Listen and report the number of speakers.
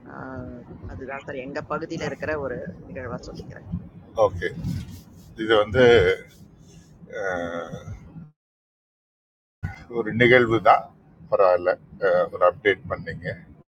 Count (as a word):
two